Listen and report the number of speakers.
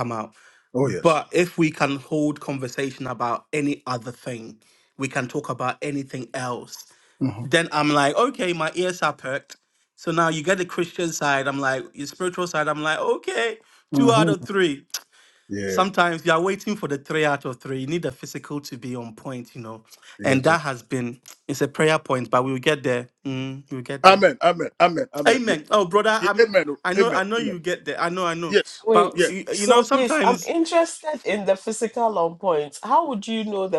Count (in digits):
3